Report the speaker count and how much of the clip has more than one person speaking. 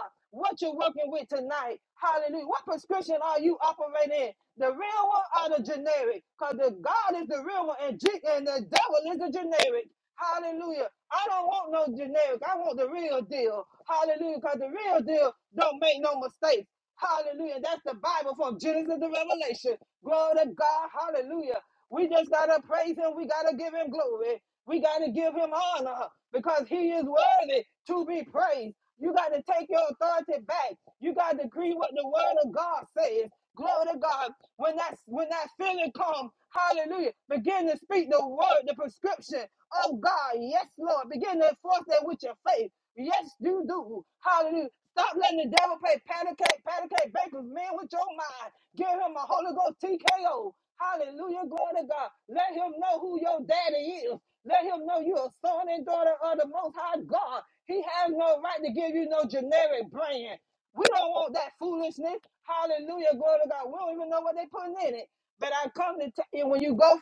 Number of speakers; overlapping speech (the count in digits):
1, no overlap